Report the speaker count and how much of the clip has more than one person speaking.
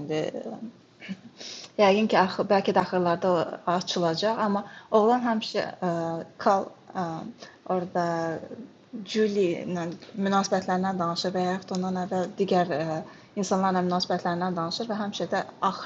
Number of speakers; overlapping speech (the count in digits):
1, no overlap